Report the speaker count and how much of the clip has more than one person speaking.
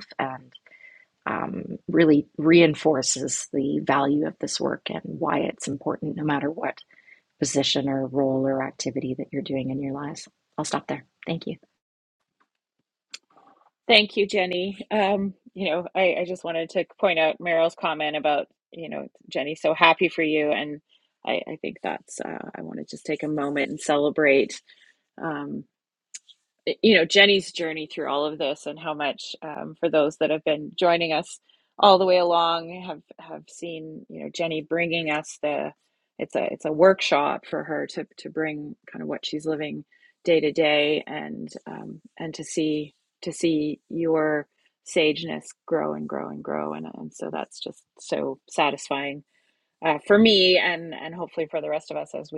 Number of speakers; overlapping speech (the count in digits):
2, no overlap